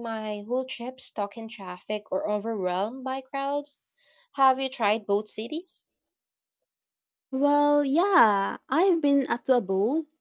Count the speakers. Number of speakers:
2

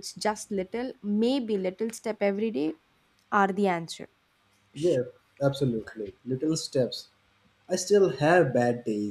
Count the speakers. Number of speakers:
2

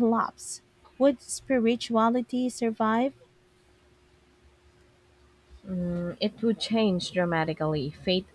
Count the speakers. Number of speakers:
2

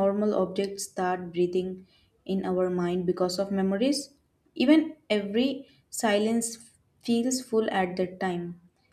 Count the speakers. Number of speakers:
1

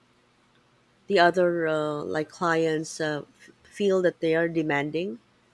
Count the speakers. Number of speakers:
1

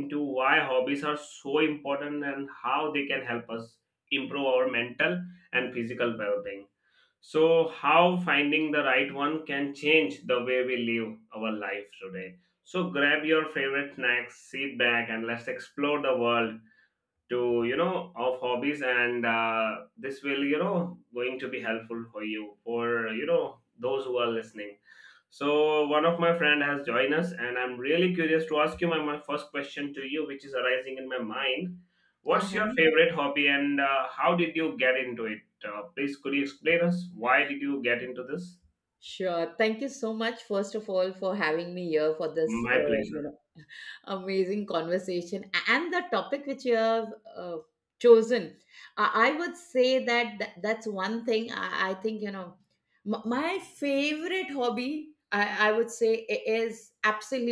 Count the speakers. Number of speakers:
2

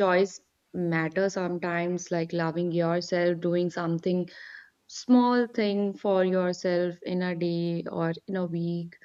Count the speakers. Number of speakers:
1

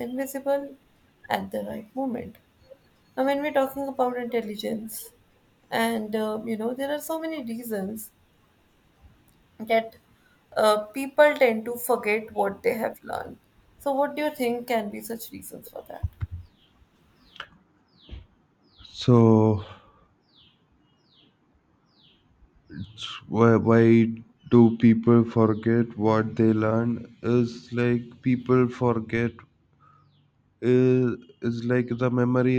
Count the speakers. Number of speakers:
2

